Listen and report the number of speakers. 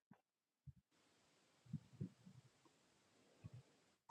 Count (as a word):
zero